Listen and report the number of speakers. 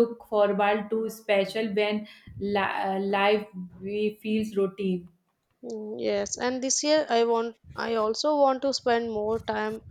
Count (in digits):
2